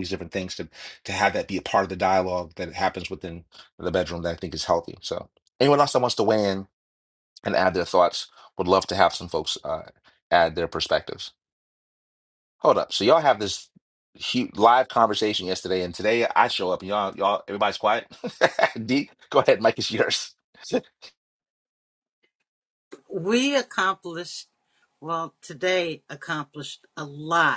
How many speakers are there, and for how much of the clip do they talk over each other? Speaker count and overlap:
2, no overlap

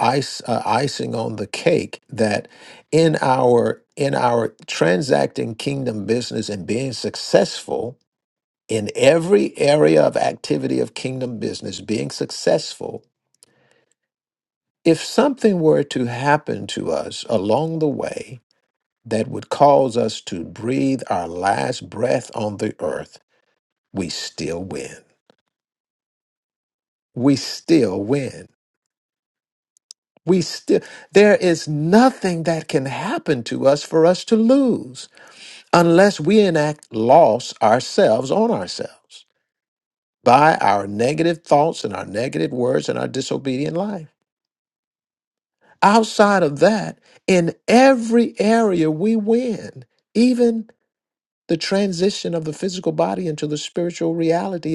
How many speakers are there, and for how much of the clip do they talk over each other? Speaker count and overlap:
1, no overlap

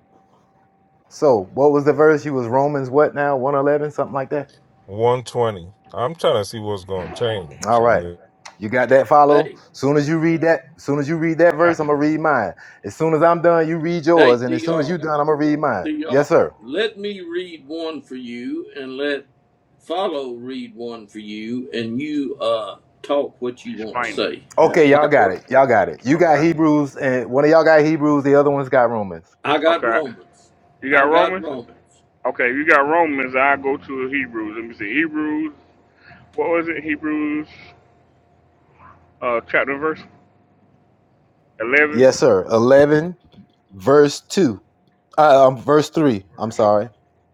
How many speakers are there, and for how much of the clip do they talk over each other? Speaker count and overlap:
4, about 11%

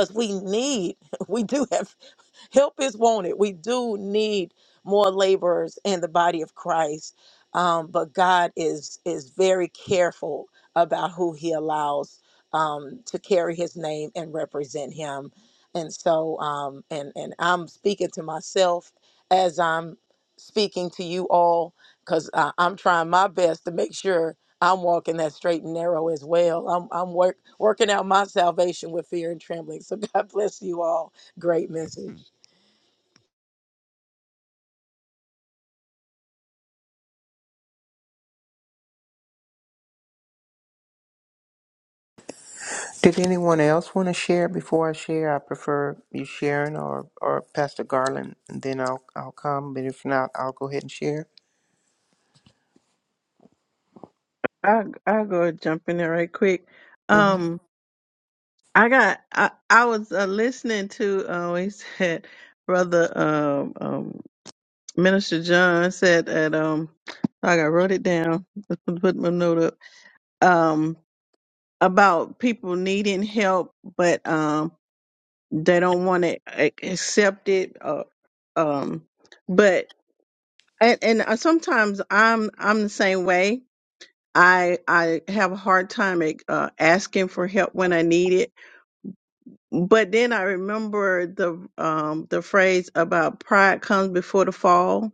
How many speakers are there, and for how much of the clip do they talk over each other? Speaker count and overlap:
3, under 1%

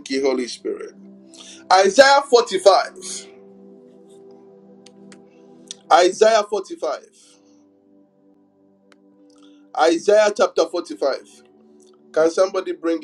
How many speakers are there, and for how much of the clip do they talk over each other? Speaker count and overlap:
1, no overlap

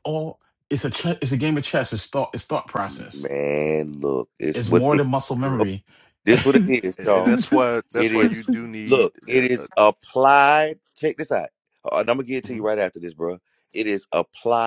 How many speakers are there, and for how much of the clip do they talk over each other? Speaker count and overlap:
3, about 17%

